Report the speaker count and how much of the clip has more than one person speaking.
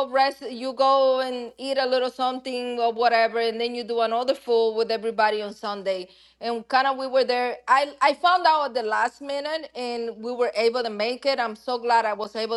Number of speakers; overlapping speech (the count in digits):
1, no overlap